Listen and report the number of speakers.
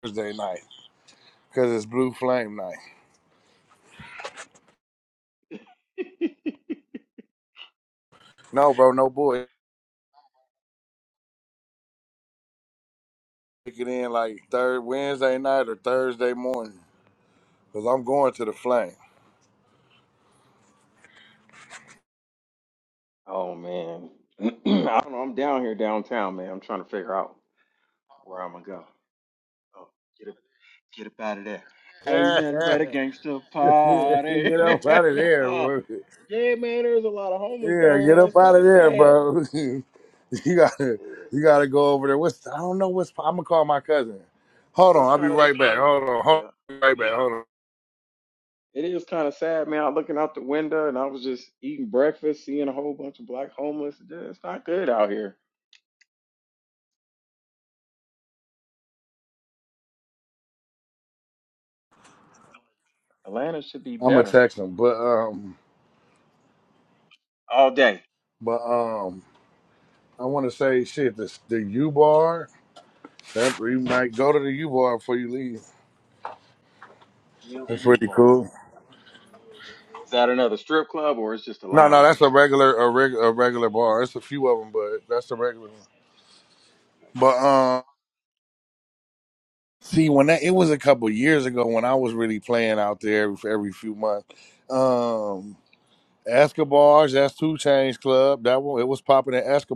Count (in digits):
2